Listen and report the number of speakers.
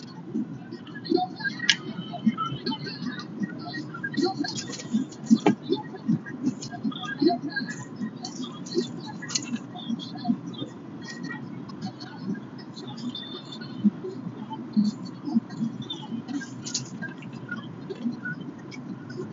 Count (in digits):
0